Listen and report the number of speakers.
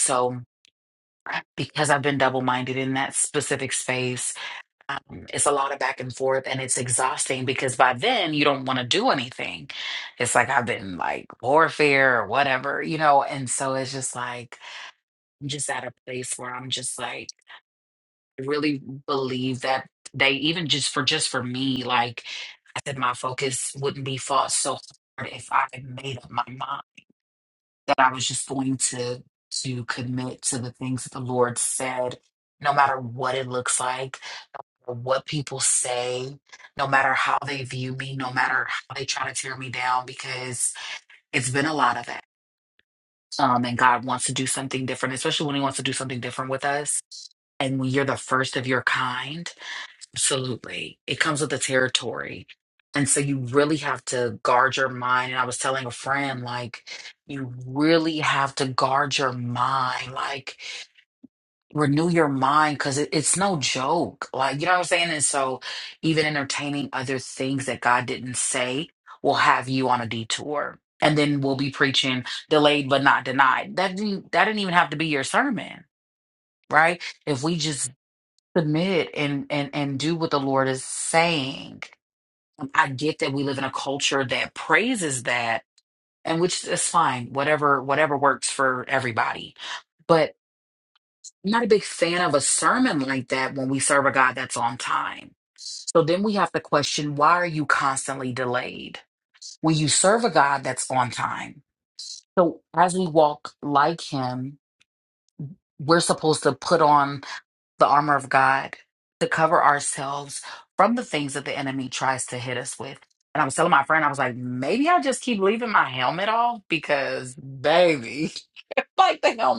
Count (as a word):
one